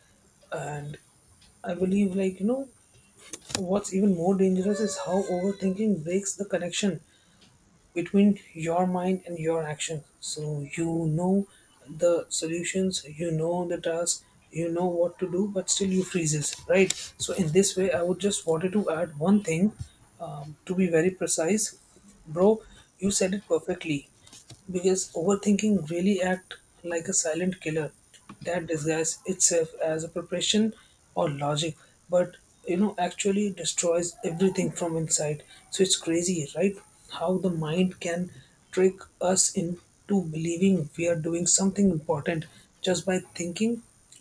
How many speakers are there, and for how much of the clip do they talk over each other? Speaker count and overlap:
1, no overlap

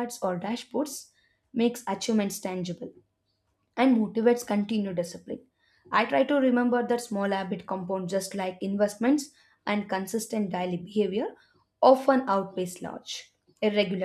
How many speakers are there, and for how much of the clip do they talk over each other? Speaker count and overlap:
1, no overlap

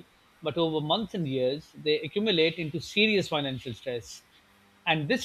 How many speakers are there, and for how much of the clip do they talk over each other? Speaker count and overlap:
1, no overlap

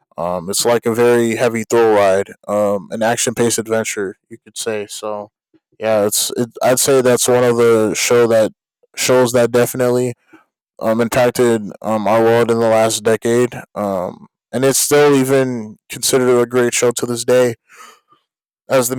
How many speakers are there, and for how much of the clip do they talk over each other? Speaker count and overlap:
1, no overlap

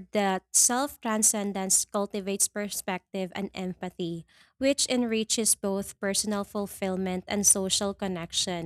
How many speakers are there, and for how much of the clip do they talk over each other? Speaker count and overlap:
1, no overlap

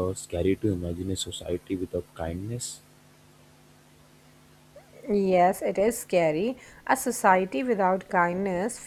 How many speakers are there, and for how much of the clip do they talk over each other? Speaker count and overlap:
2, no overlap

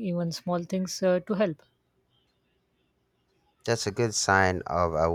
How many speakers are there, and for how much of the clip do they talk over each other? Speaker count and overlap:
2, no overlap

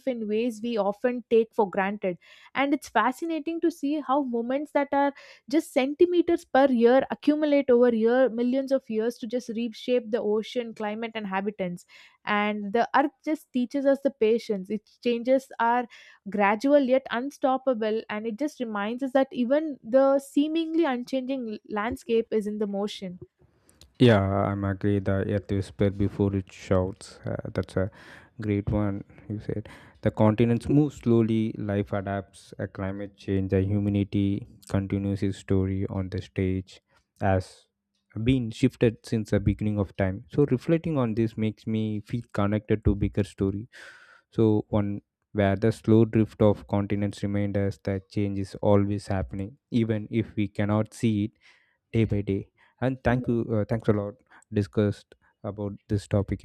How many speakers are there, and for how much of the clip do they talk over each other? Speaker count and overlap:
2, under 1%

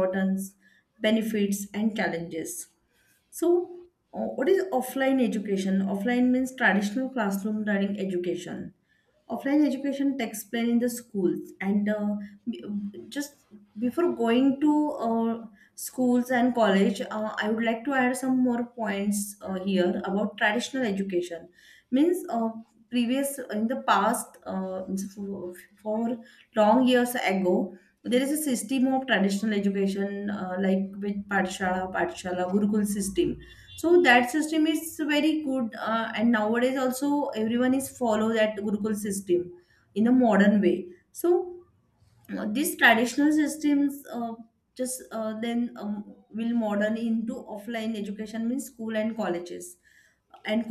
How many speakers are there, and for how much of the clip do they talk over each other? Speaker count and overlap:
1, no overlap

